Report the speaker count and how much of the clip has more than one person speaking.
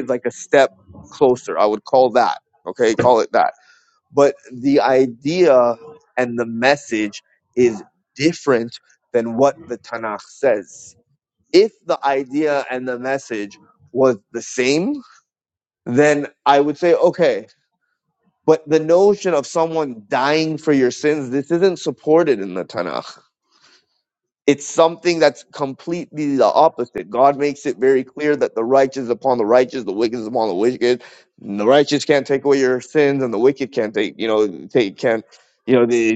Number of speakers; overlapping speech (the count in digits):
1, no overlap